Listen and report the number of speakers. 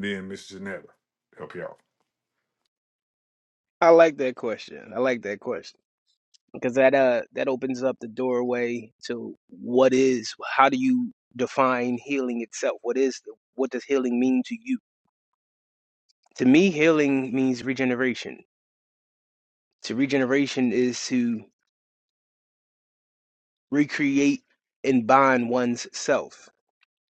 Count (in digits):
2